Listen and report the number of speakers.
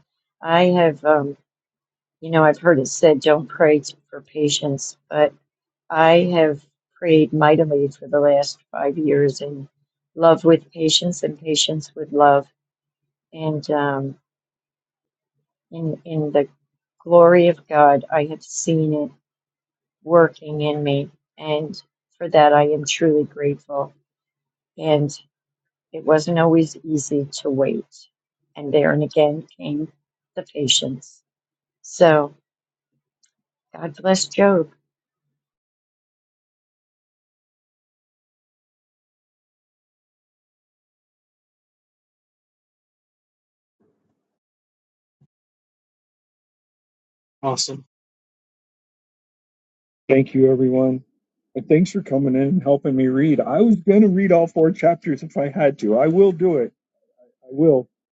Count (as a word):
two